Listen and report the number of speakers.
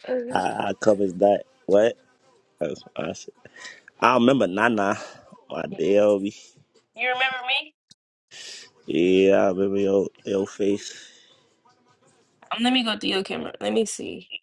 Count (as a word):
two